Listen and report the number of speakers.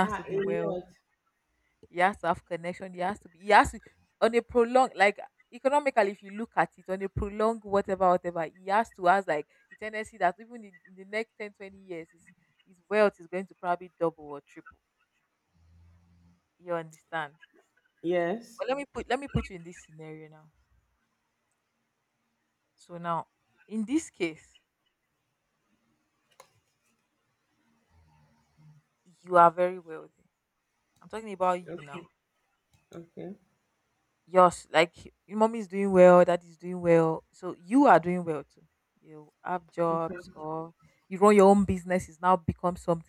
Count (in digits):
2